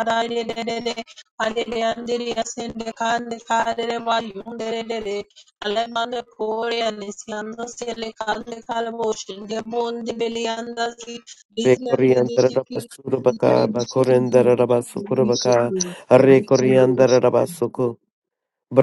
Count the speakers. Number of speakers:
2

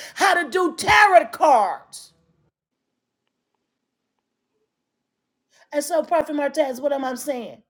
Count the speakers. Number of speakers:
1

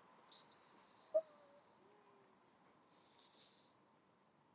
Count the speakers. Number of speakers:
0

